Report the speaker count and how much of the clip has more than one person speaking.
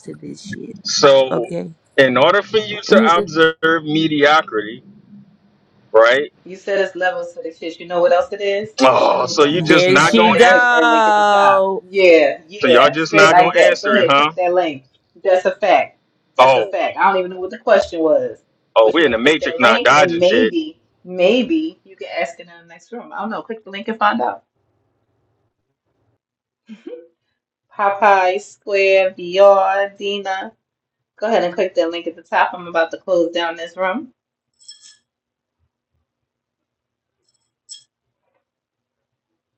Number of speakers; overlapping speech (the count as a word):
three, about 16%